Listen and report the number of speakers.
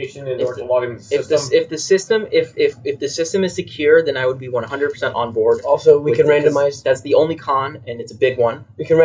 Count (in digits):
3